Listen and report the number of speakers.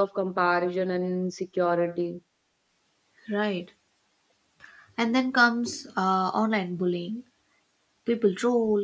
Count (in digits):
2